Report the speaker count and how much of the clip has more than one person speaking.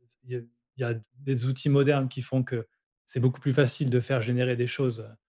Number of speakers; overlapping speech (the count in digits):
1, no overlap